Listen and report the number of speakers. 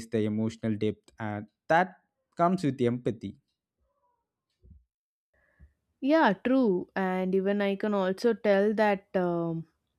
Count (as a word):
two